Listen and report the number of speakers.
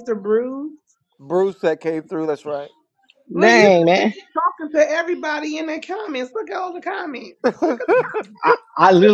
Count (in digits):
3